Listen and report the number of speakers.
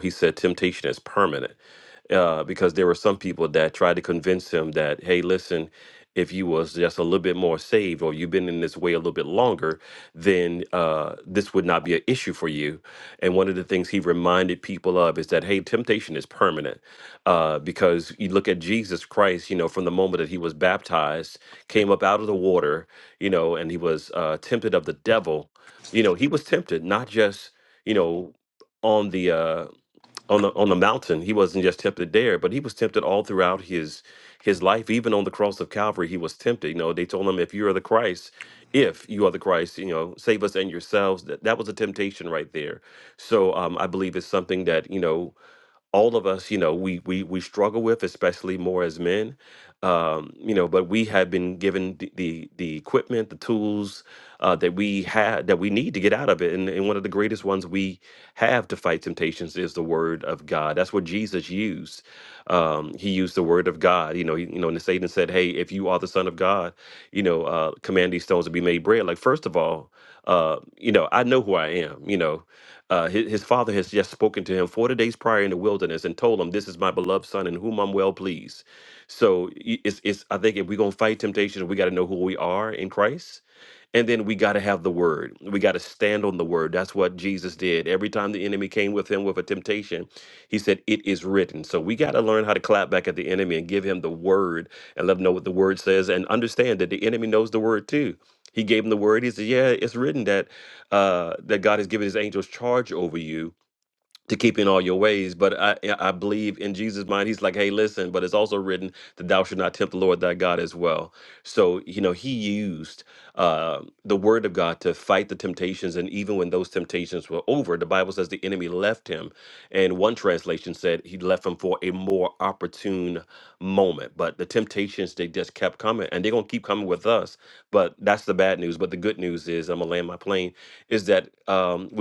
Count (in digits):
1